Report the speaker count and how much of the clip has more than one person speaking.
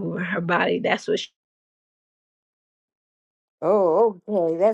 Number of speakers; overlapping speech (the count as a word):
two, no overlap